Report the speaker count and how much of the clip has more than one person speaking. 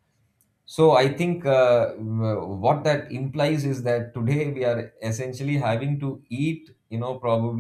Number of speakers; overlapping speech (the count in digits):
1, no overlap